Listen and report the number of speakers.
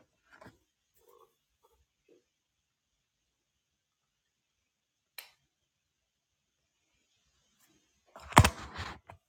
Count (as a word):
zero